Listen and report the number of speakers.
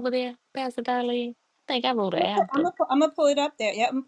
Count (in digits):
2